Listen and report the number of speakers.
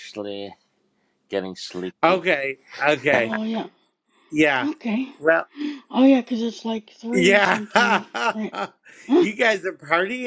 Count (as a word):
three